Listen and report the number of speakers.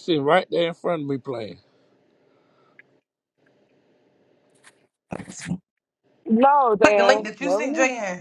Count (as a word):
three